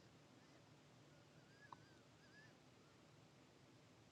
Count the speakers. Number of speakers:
zero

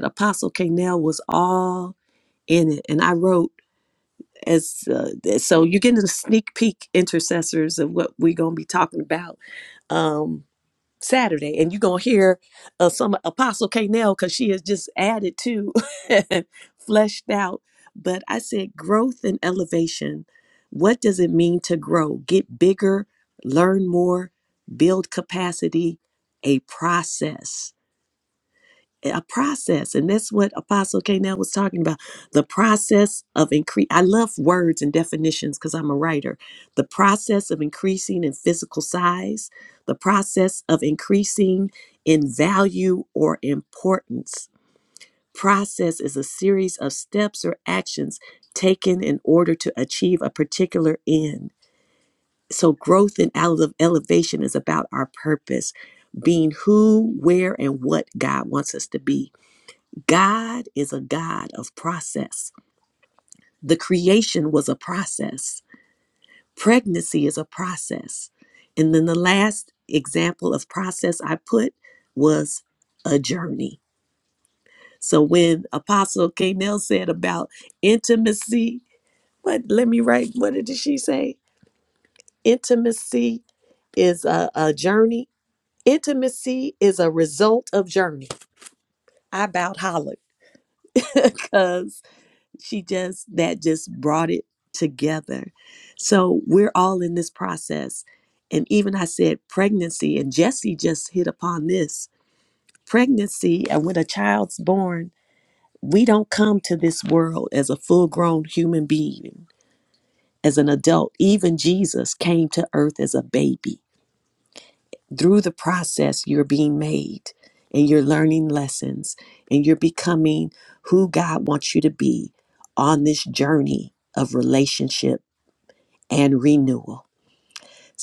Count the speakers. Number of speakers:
one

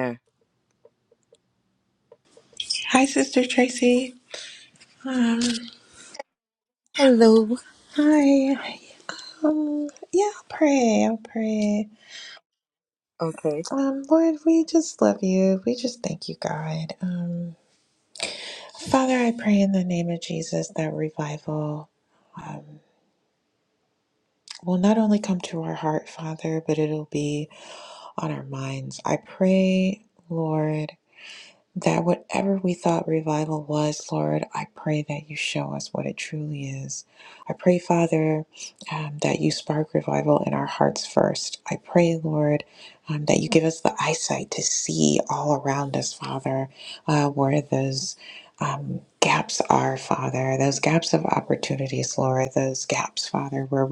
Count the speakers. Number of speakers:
two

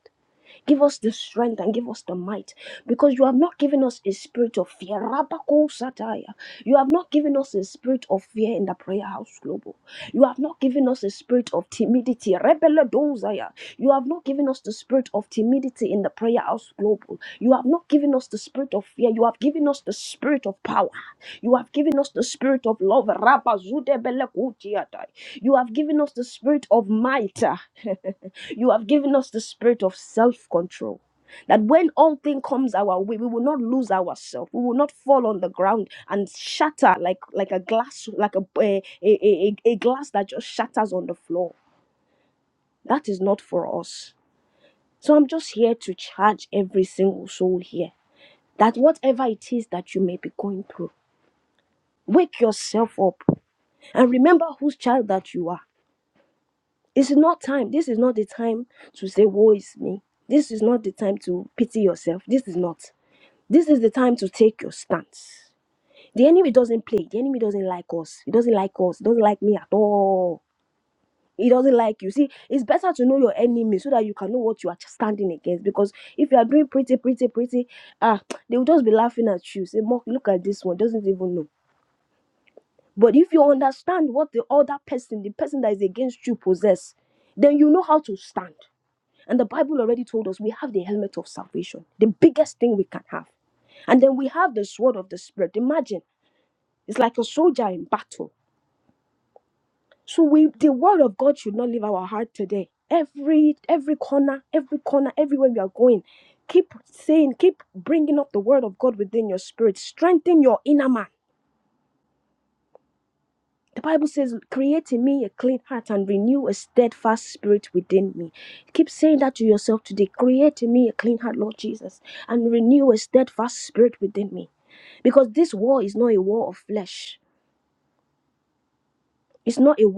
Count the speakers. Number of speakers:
one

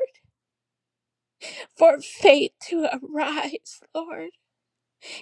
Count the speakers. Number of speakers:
one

